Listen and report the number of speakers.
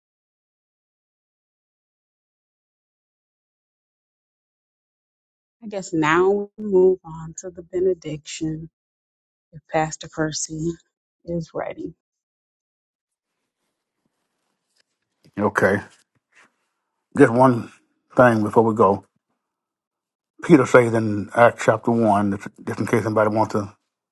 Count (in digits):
2